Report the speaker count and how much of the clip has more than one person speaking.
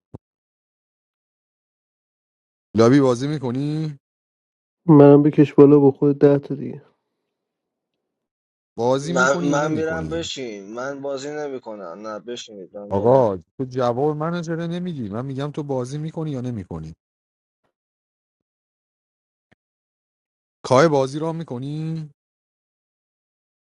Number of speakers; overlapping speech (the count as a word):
three, about 7%